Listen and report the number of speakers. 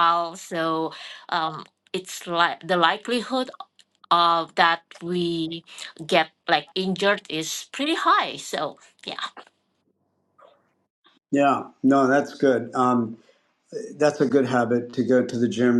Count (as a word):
two